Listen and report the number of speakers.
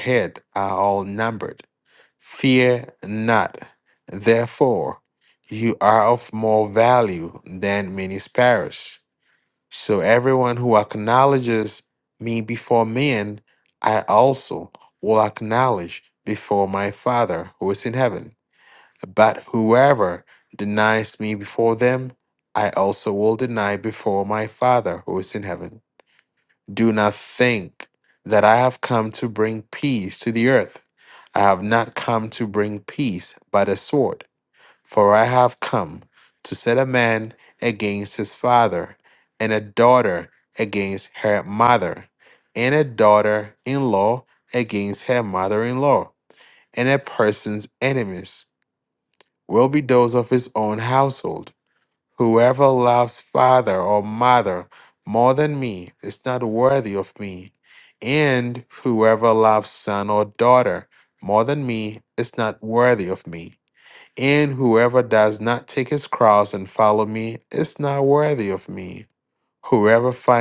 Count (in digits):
1